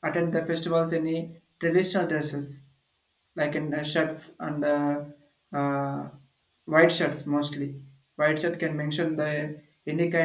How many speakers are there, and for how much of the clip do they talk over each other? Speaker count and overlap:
1, no overlap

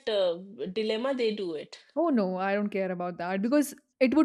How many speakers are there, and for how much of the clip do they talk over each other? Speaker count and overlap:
2, no overlap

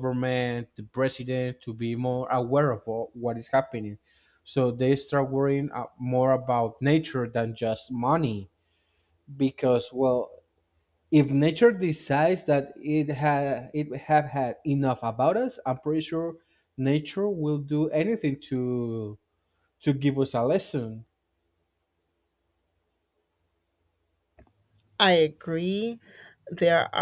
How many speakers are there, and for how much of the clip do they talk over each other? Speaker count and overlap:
2, no overlap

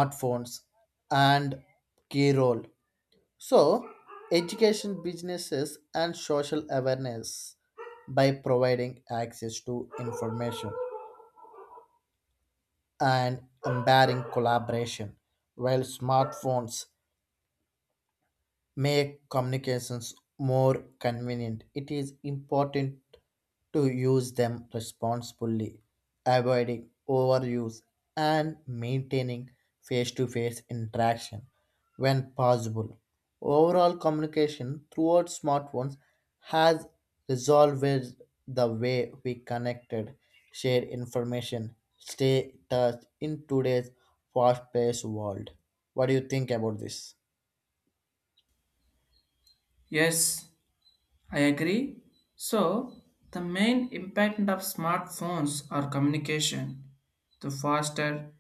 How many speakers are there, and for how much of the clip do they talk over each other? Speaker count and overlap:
2, no overlap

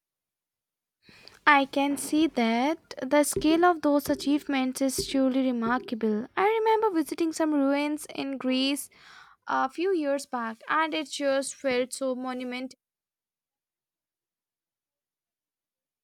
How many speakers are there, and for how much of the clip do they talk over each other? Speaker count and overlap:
1, no overlap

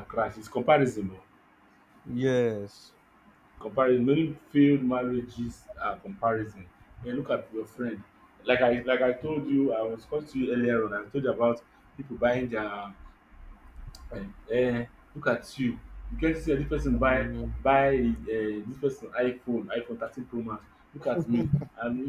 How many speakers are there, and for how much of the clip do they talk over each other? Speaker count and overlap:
2, about 3%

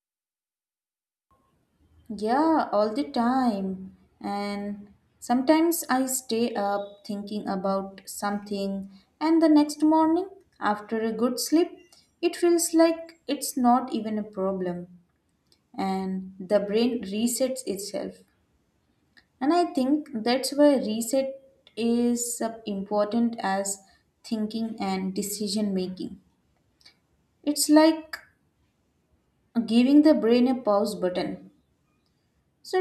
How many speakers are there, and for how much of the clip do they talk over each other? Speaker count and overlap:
1, no overlap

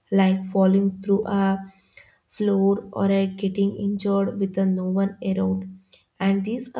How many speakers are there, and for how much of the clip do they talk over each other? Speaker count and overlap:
1, no overlap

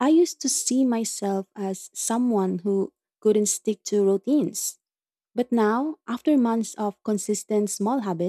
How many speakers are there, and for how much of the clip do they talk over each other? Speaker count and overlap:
1, no overlap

